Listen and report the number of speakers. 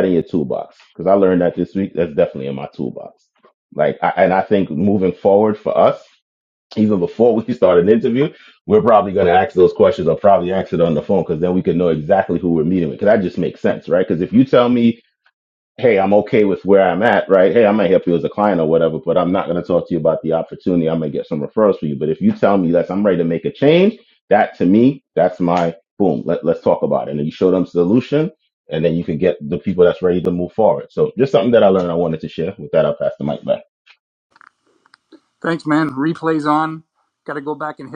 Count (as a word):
two